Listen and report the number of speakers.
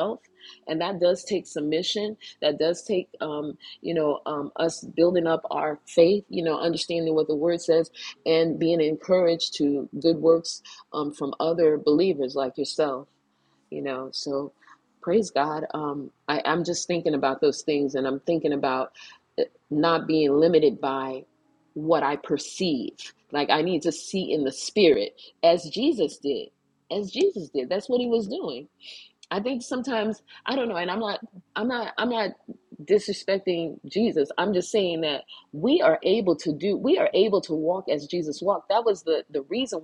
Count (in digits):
1